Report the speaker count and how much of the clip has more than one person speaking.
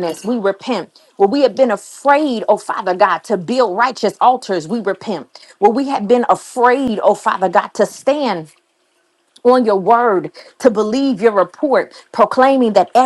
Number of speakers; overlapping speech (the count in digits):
1, no overlap